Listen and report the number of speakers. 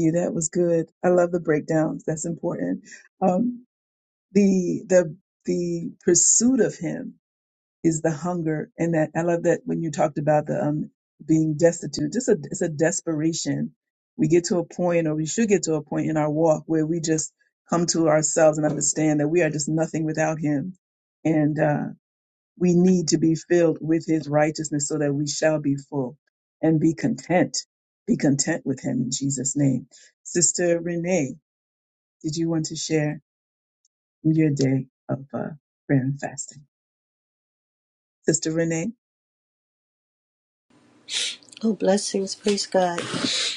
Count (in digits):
2